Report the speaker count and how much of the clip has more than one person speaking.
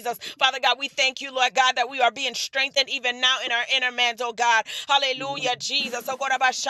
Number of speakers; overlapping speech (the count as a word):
one, no overlap